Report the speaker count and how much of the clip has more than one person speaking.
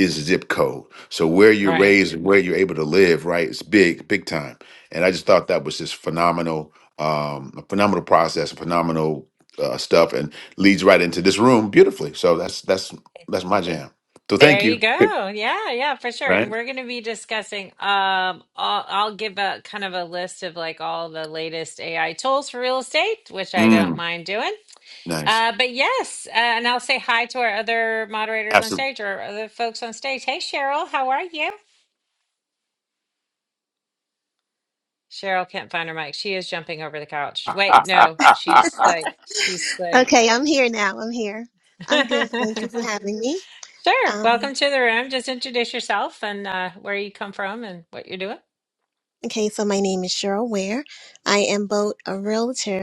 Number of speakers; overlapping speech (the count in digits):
3, about 5%